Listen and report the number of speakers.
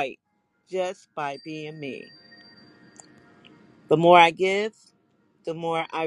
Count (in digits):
1